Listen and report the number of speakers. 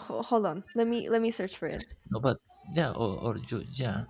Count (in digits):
2